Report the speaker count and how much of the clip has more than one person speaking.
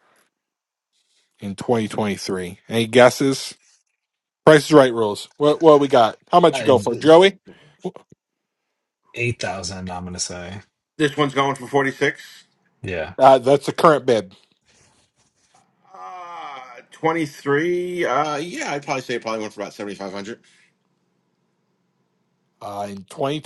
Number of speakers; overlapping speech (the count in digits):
3, about 1%